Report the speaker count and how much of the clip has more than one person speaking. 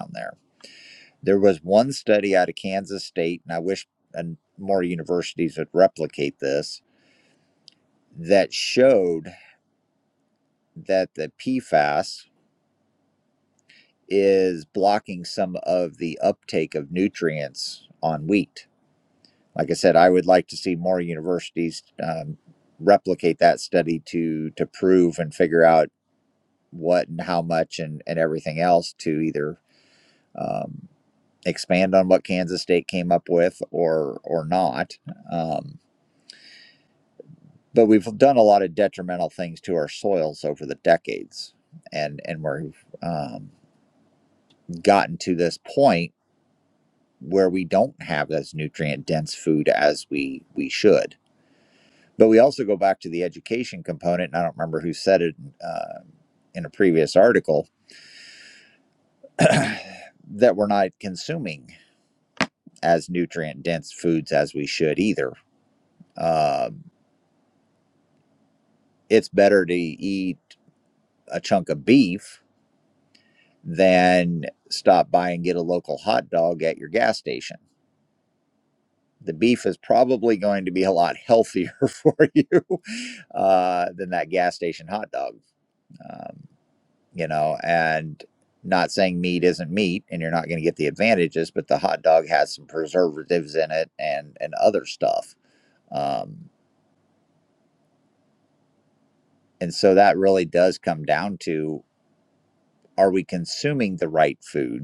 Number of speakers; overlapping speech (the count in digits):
1, no overlap